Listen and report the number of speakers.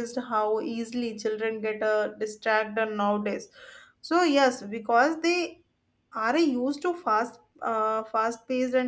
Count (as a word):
one